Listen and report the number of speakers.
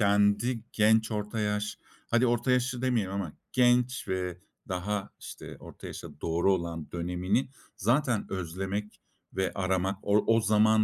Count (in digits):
1